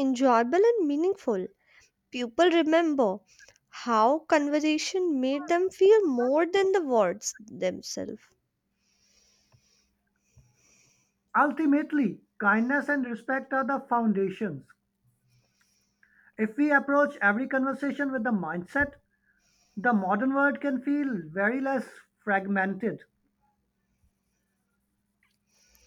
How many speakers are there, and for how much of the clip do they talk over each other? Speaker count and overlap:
2, no overlap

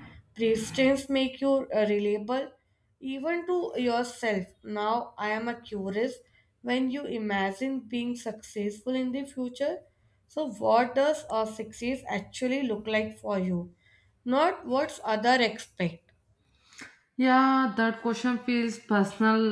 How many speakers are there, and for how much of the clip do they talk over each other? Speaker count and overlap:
2, no overlap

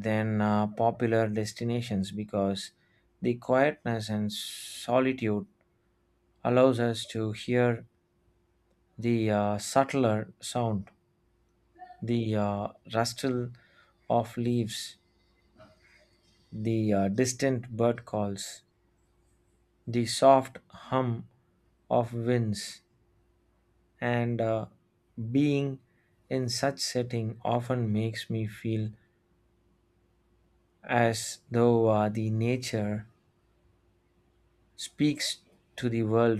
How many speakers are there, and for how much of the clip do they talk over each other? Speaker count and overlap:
1, no overlap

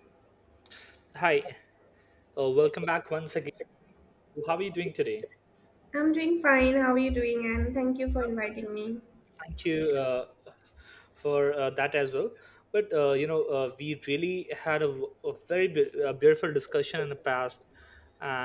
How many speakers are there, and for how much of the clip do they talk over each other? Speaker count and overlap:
2, no overlap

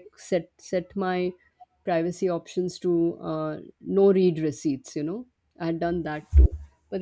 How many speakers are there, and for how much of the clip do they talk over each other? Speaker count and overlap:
1, no overlap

